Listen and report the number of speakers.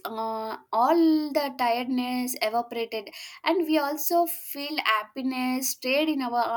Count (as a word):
one